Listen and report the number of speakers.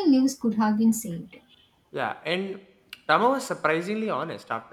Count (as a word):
two